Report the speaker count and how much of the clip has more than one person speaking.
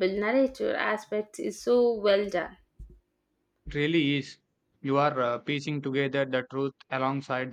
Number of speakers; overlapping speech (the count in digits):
2, no overlap